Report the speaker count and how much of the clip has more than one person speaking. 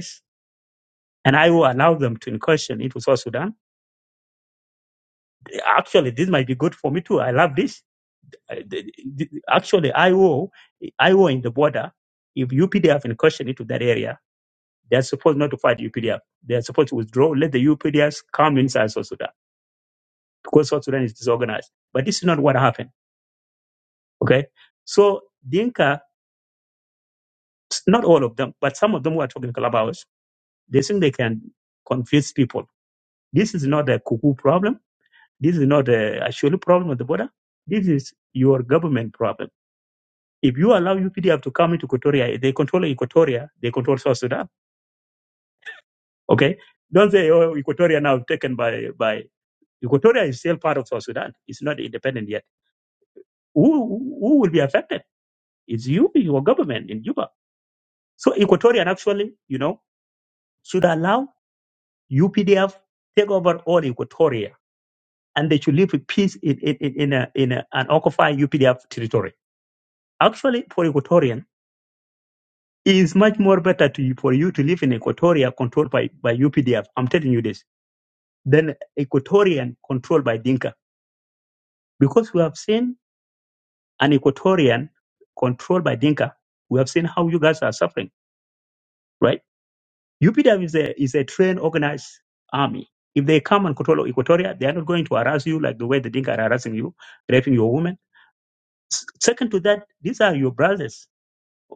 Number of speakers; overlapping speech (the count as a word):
one, no overlap